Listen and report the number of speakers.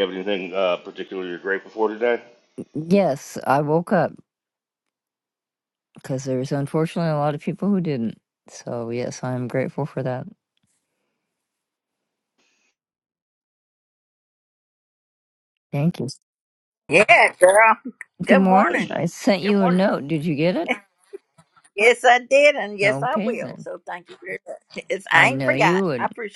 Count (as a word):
three